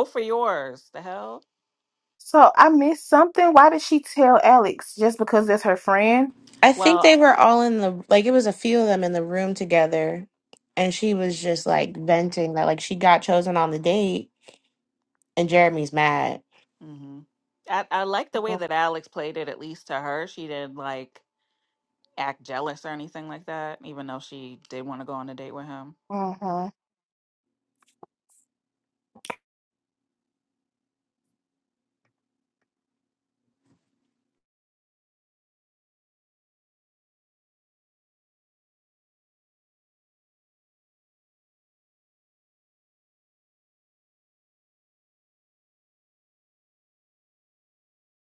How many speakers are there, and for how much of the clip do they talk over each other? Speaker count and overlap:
three, about 1%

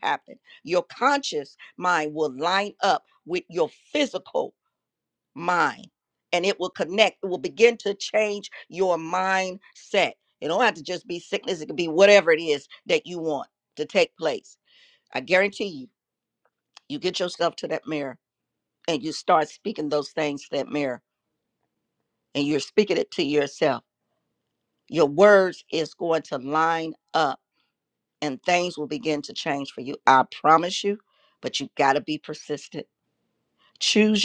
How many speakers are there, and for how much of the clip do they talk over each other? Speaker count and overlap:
one, no overlap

